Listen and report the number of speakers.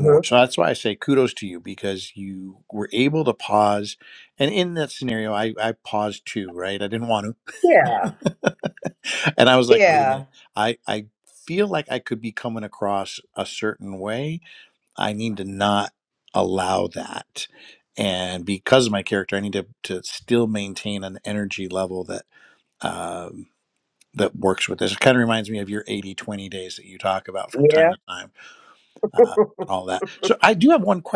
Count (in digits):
2